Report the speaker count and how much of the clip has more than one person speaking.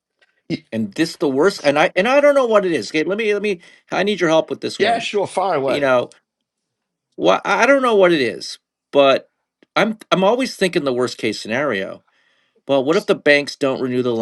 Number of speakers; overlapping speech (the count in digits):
2, about 3%